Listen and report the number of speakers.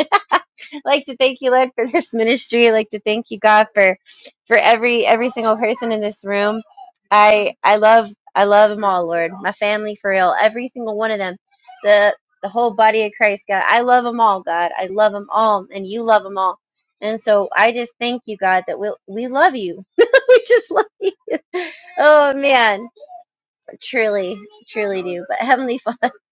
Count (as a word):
one